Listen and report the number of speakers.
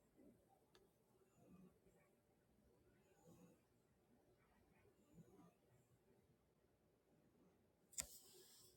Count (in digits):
0